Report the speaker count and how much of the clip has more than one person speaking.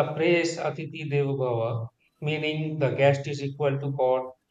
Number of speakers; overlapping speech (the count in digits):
1, no overlap